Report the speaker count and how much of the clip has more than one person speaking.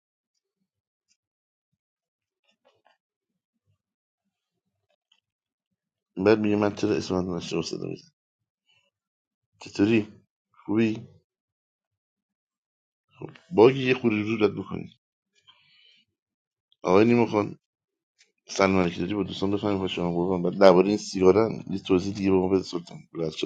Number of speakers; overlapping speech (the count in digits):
1, no overlap